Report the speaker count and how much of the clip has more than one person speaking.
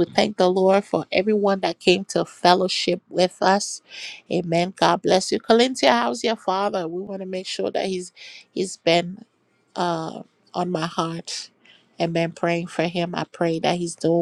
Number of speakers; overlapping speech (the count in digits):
1, no overlap